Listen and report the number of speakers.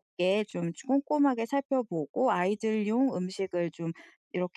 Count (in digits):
1